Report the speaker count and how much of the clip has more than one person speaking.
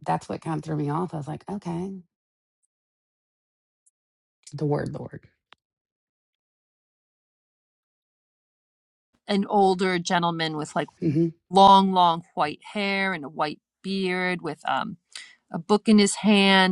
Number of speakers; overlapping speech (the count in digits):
2, no overlap